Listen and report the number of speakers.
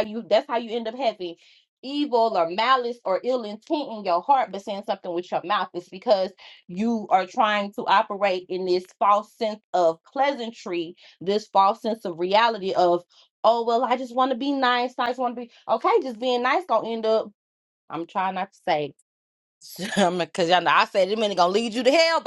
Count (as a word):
one